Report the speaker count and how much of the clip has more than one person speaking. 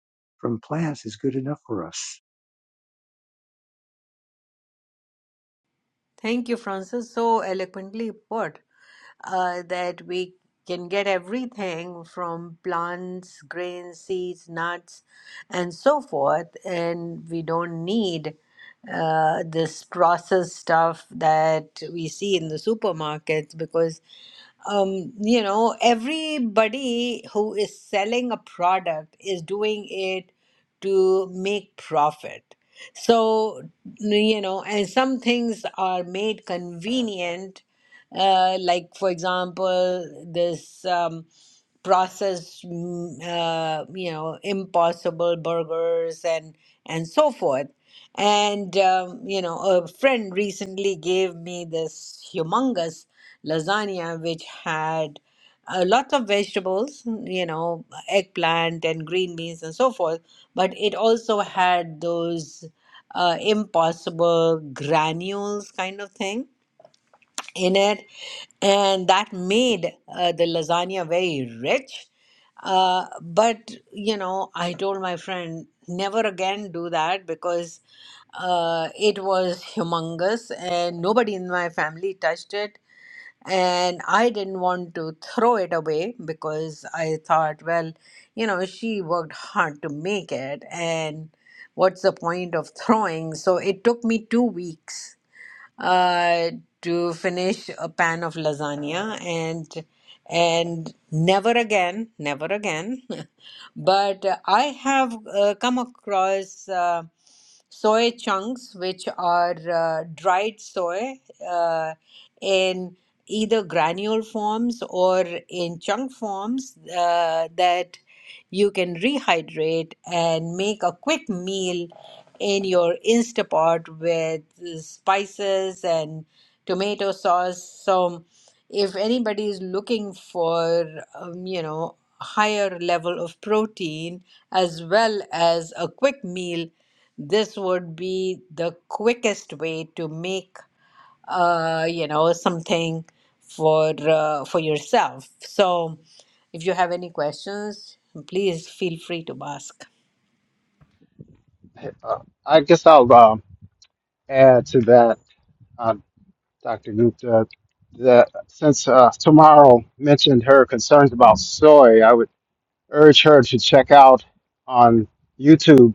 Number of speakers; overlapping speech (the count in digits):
3, no overlap